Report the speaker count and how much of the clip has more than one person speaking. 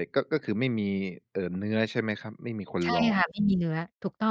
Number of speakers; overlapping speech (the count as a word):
two, about 10%